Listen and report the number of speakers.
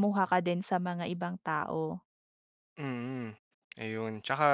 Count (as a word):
two